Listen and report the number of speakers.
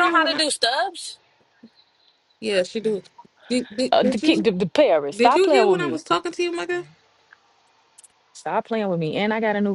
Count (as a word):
three